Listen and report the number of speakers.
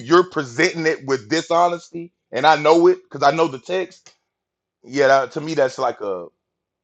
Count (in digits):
1